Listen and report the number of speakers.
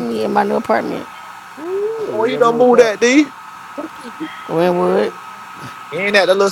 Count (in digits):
3